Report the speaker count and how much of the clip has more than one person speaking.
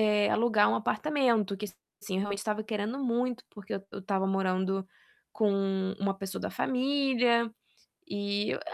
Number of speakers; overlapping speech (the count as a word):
one, no overlap